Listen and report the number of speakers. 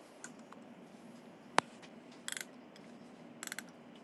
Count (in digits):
0